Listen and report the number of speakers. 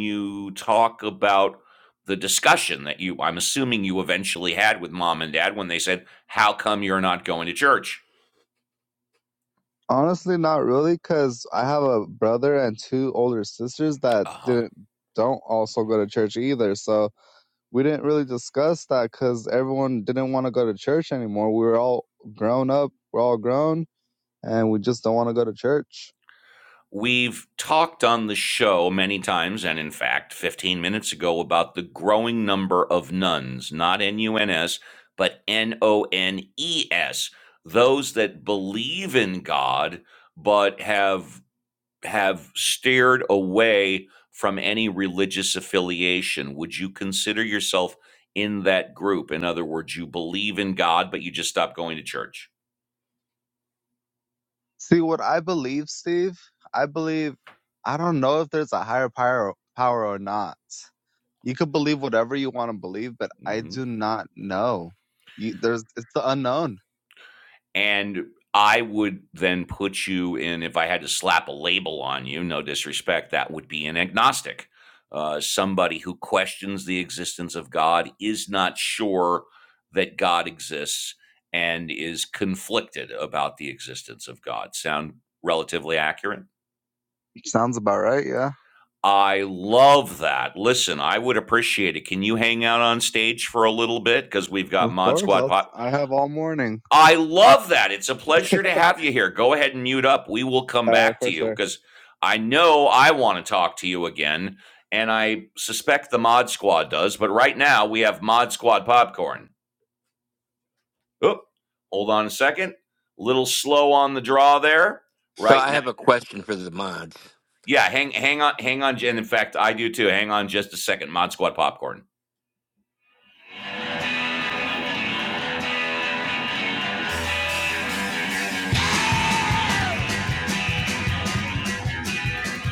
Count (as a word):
three